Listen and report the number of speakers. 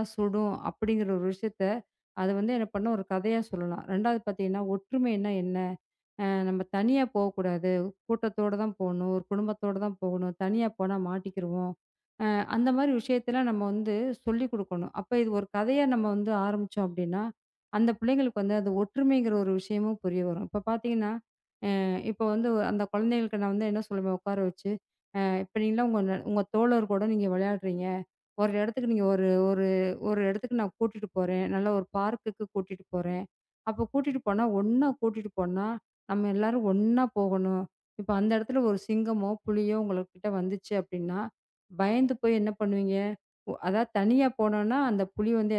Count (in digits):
1